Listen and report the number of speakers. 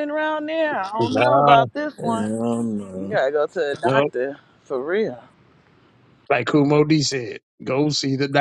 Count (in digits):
3